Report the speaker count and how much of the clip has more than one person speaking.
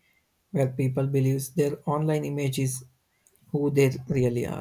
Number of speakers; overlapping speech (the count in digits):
1, no overlap